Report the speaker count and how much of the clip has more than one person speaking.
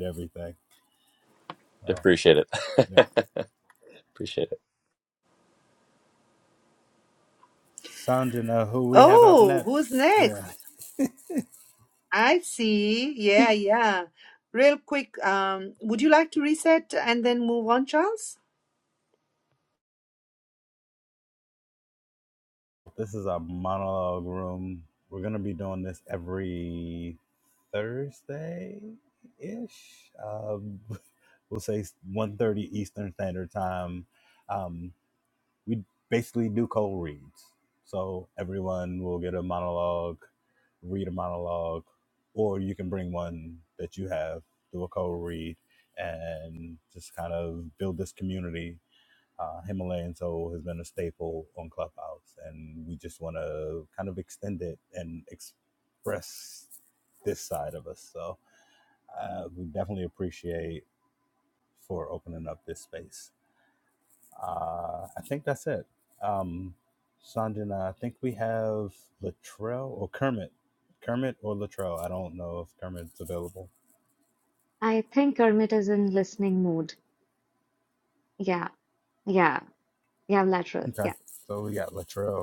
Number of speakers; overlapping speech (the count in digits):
4, about 2%